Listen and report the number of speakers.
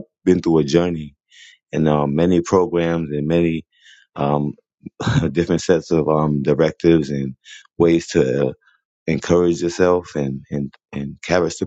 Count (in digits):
1